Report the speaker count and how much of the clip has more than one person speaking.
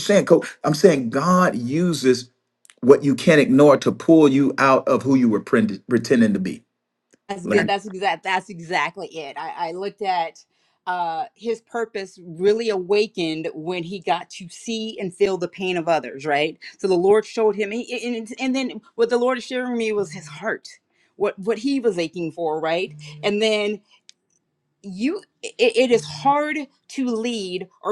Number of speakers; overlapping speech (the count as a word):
two, about 1%